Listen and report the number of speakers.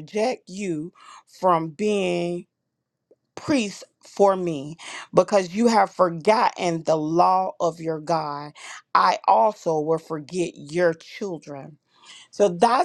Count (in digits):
1